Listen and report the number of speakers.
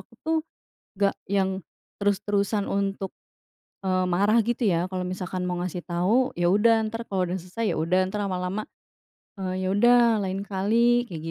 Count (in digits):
1